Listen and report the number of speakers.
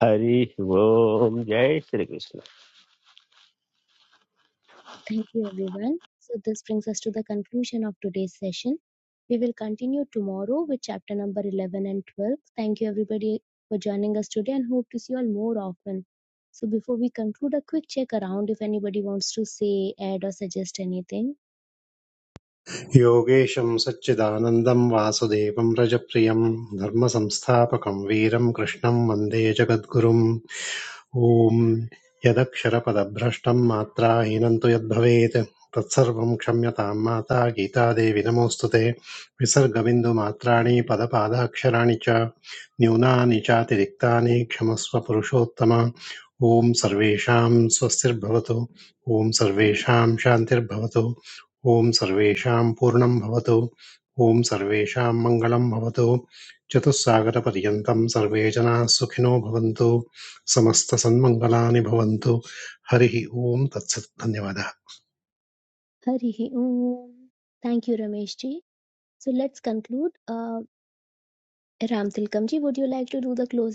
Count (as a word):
three